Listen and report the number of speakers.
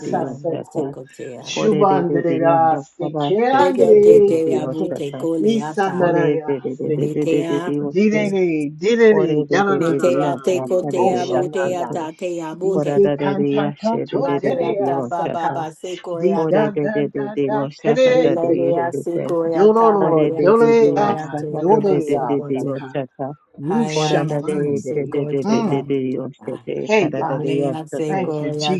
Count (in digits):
3